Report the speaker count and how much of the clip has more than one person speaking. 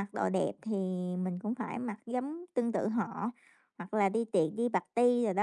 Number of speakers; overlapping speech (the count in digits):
1, no overlap